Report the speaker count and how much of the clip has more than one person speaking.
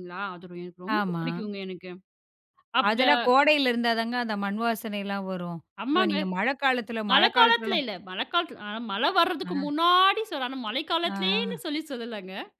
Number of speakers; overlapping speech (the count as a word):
two, about 18%